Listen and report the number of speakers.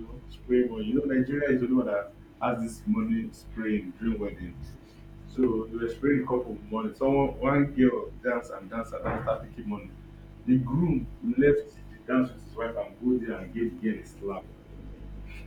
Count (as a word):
one